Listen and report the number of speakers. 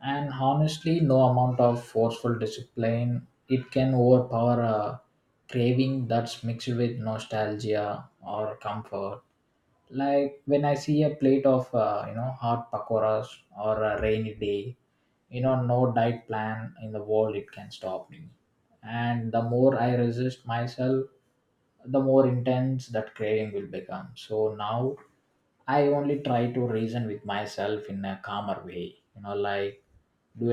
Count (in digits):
1